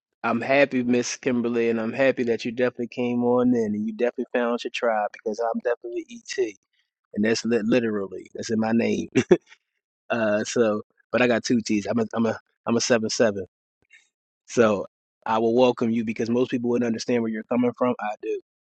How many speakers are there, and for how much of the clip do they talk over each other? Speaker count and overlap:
one, no overlap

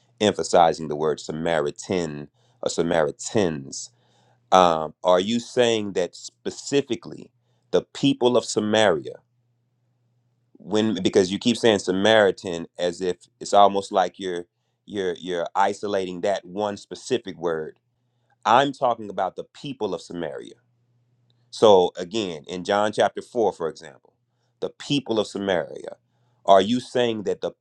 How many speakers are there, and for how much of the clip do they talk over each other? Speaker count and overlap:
one, no overlap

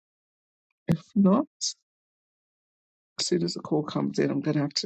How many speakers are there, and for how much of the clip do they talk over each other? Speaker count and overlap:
one, no overlap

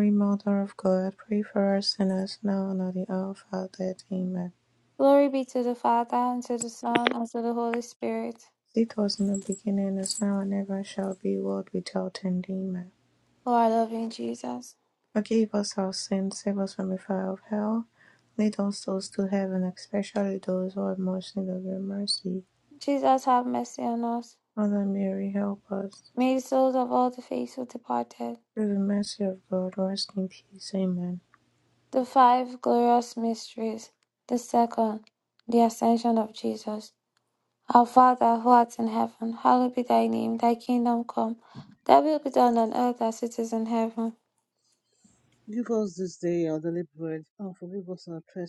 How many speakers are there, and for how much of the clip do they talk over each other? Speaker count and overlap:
three, no overlap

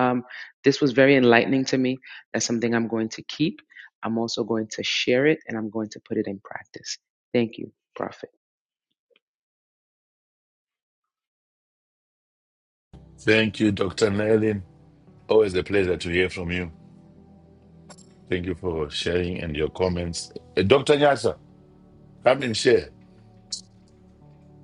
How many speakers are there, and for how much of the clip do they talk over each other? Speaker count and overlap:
two, no overlap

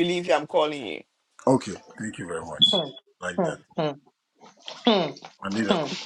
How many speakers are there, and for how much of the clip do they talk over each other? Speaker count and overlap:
three, about 7%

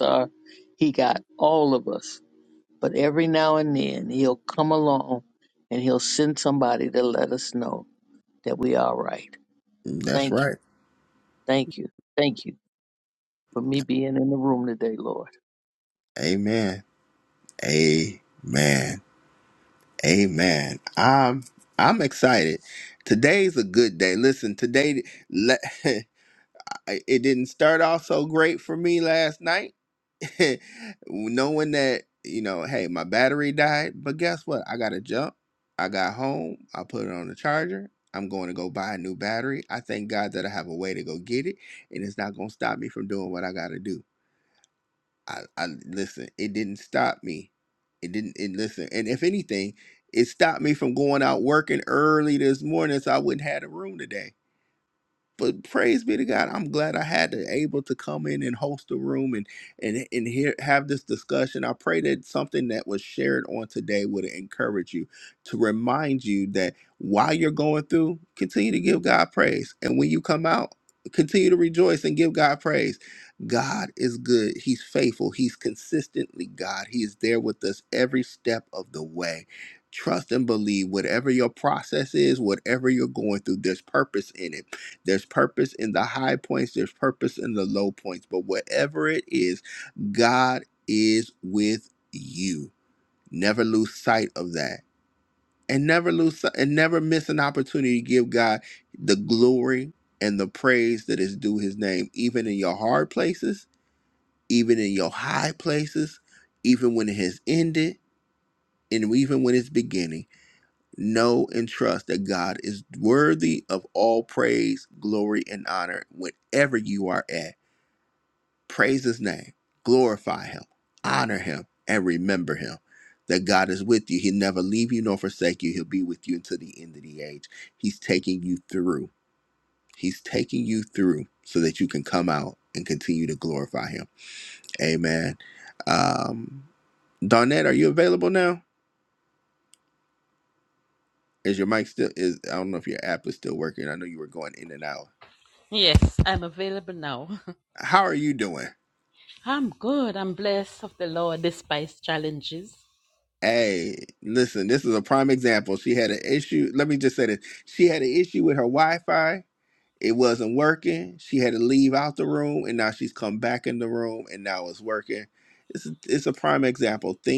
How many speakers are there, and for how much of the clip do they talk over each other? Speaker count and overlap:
three, under 1%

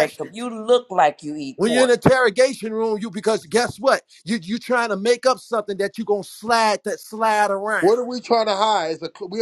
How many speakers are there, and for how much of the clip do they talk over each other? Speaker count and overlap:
three, about 9%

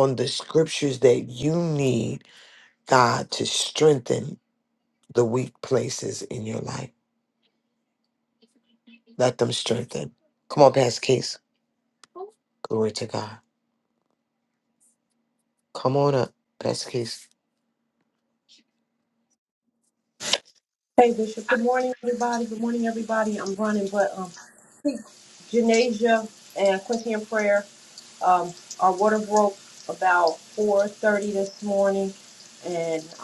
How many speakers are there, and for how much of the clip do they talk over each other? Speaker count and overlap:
two, no overlap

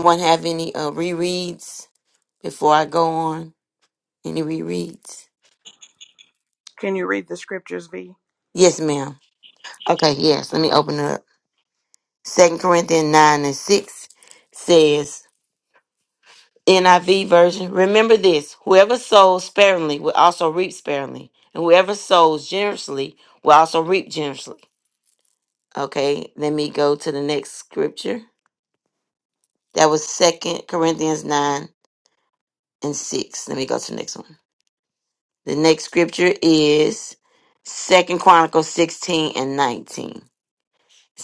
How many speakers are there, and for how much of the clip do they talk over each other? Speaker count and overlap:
two, no overlap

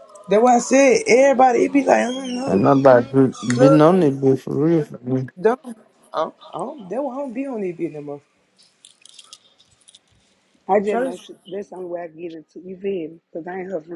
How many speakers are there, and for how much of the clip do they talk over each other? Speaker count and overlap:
three, about 6%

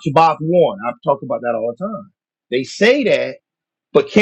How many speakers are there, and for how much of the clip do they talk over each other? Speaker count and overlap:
one, no overlap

